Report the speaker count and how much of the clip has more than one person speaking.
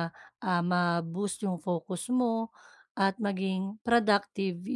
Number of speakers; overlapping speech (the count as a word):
one, no overlap